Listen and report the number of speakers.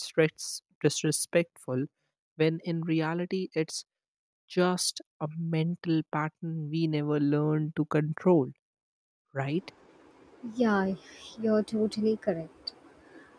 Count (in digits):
2